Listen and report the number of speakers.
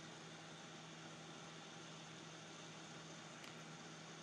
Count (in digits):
0